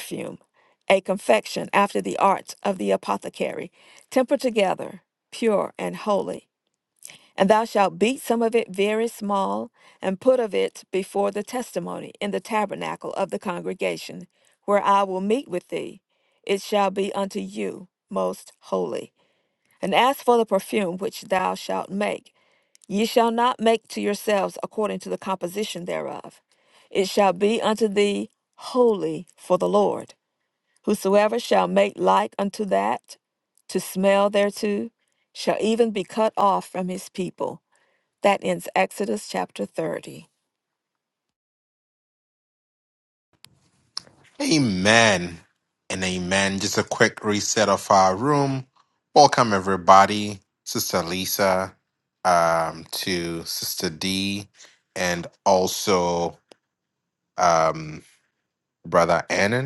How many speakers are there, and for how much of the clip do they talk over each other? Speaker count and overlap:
two, no overlap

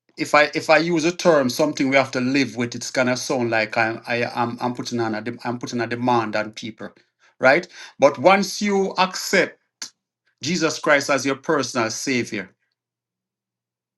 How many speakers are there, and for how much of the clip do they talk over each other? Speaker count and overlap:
one, no overlap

